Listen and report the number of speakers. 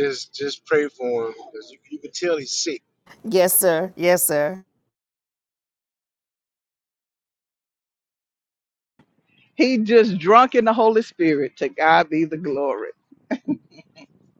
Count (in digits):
3